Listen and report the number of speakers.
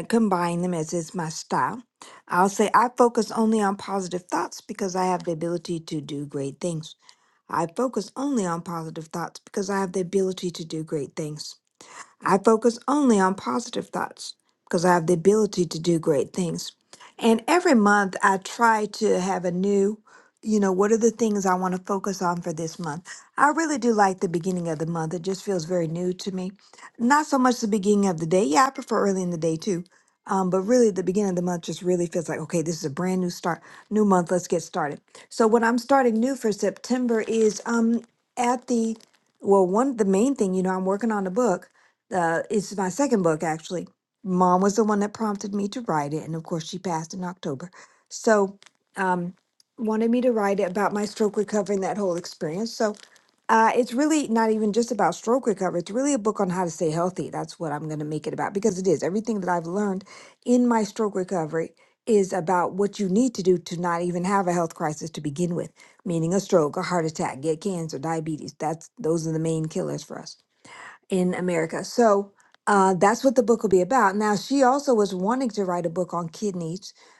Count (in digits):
1